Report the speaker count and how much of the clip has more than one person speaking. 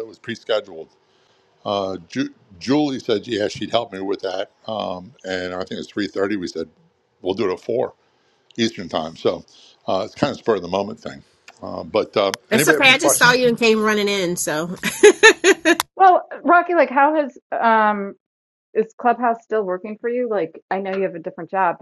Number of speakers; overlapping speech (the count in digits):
3, about 4%